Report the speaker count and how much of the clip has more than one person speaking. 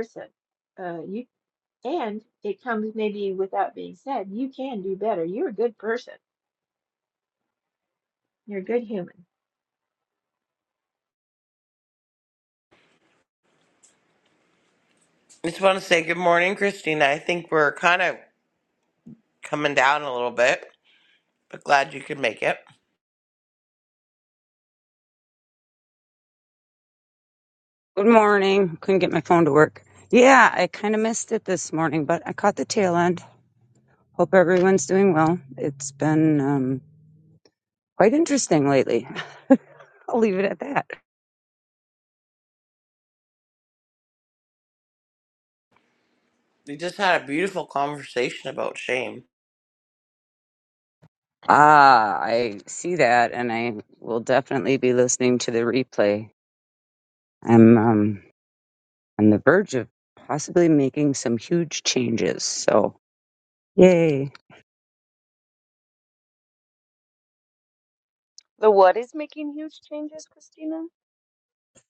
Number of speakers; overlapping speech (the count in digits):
4, no overlap